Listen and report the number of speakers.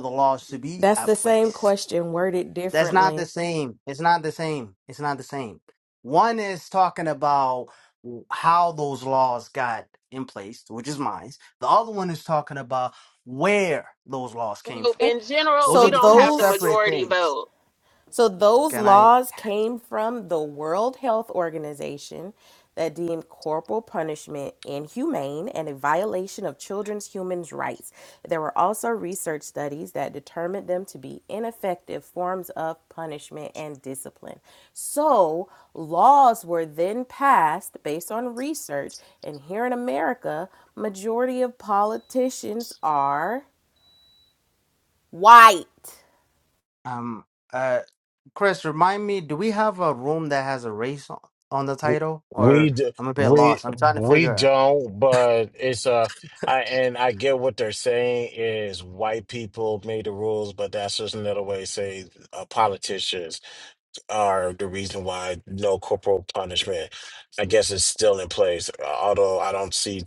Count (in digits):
4